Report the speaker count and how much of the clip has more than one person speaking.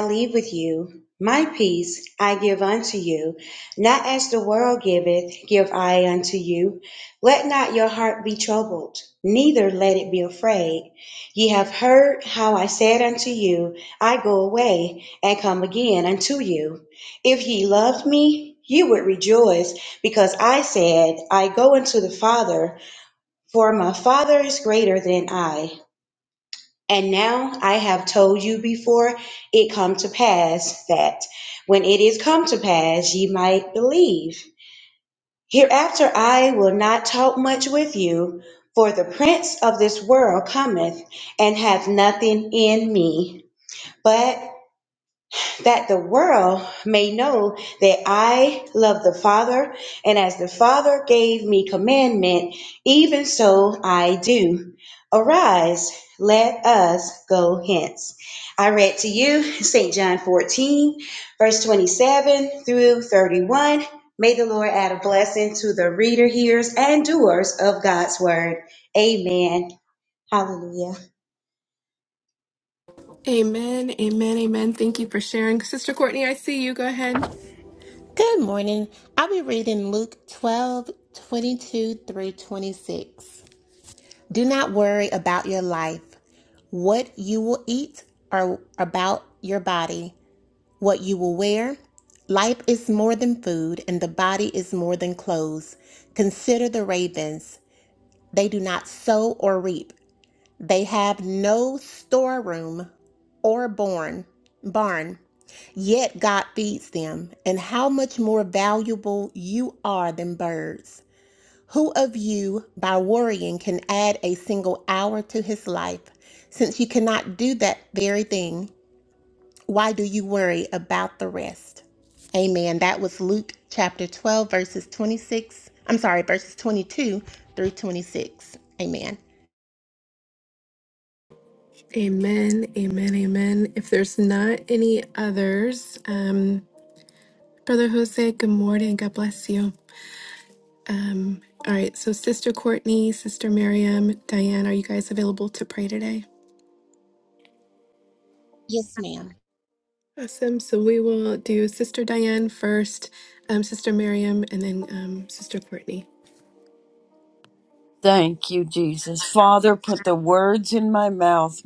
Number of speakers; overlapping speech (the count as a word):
four, no overlap